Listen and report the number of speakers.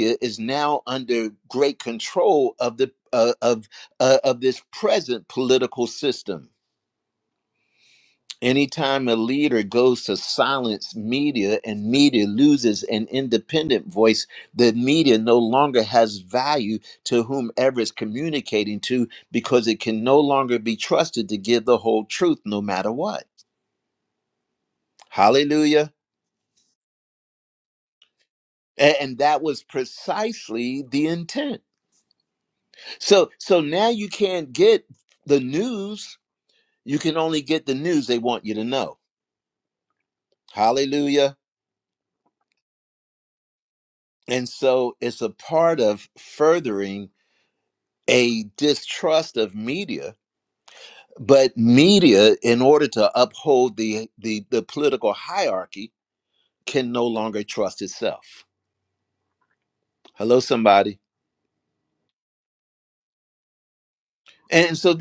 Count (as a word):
one